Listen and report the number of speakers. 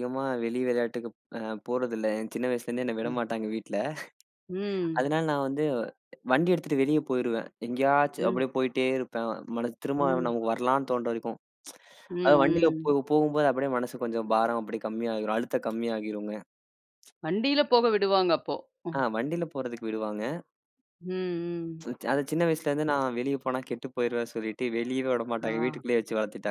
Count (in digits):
2